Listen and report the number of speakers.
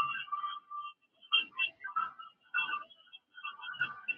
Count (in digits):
0